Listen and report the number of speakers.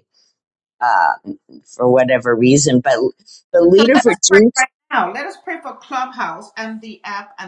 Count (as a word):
two